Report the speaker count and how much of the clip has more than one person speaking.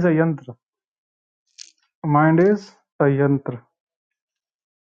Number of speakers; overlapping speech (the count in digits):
1, no overlap